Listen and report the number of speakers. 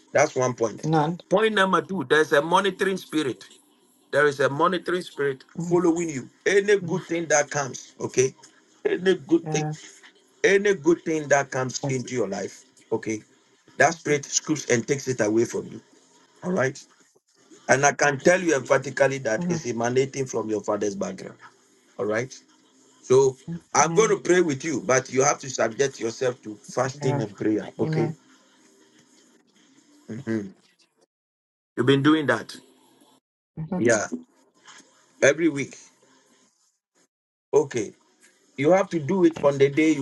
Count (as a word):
two